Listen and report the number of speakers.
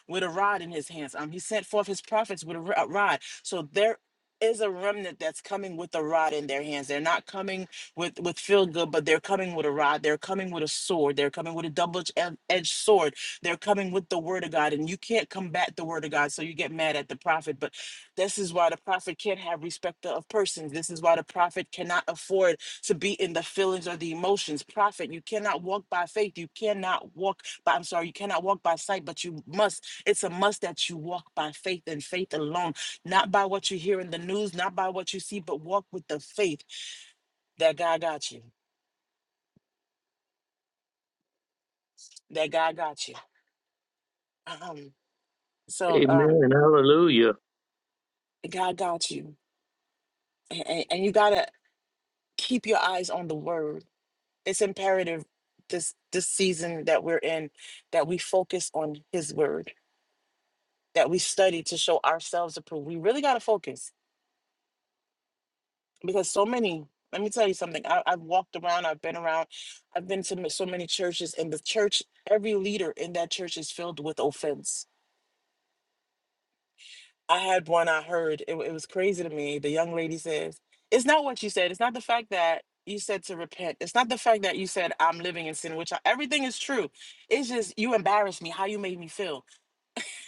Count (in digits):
2